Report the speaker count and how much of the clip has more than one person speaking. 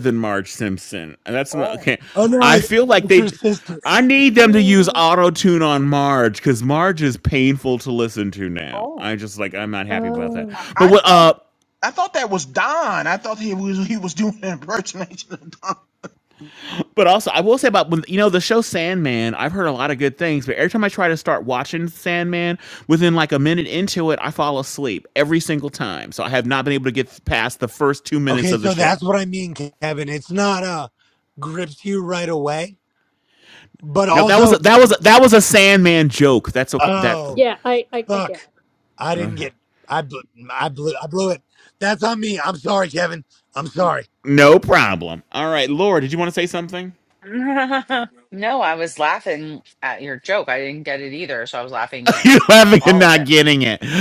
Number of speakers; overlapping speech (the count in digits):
5, about 11%